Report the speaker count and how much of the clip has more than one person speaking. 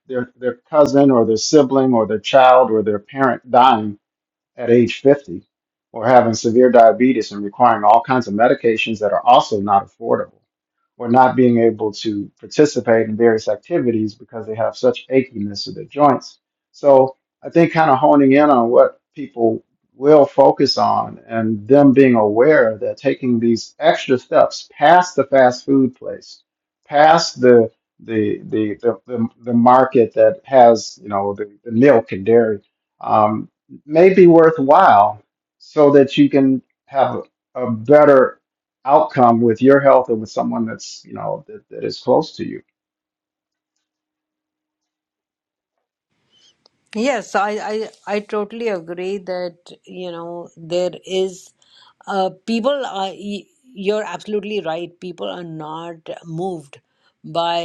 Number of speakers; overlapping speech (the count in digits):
2, no overlap